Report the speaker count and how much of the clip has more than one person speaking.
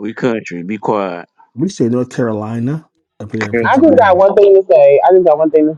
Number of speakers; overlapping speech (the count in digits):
3, about 15%